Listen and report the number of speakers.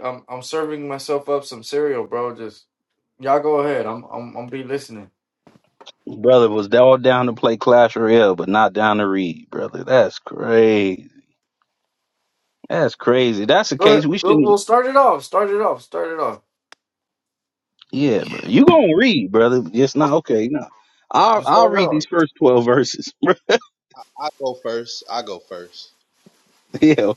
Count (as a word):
three